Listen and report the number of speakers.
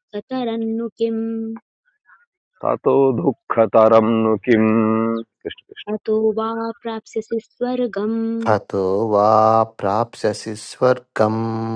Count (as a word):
three